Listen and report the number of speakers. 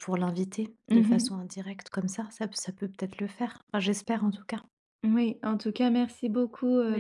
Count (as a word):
two